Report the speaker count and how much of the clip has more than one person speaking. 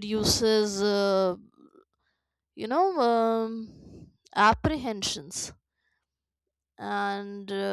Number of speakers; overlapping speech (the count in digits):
1, no overlap